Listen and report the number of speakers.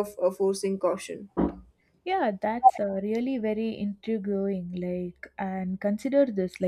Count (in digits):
2